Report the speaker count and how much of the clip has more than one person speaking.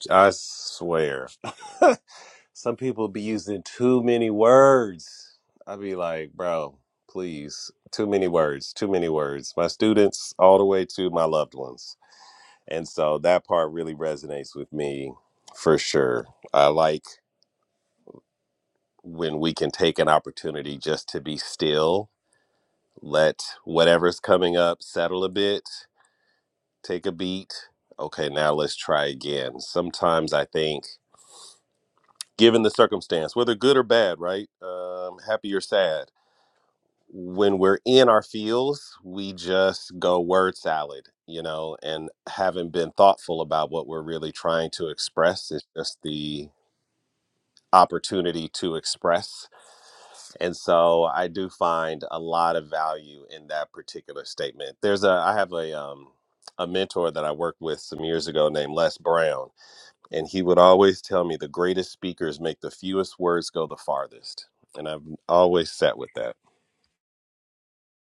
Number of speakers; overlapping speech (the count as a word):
one, no overlap